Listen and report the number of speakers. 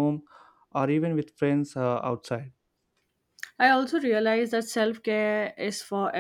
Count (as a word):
two